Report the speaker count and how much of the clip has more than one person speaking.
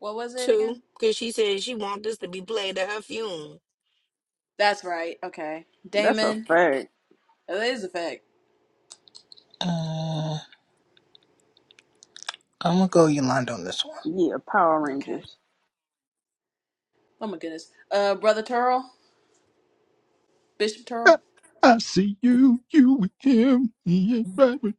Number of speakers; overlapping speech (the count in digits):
5, about 5%